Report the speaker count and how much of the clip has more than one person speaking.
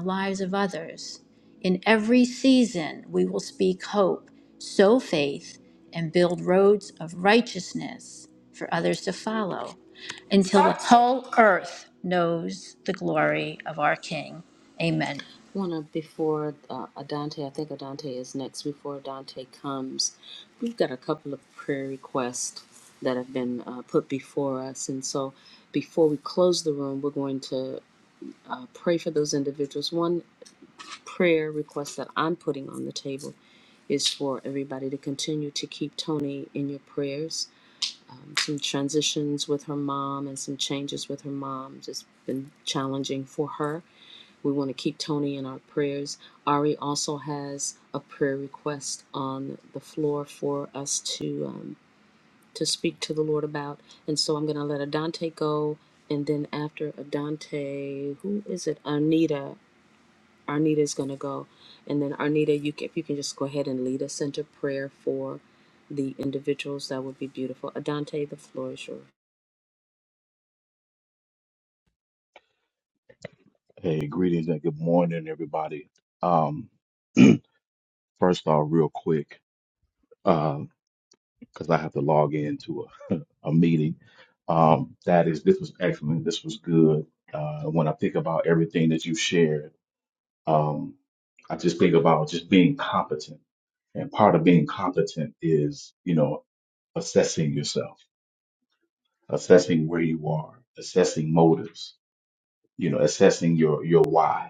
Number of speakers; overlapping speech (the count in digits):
3, no overlap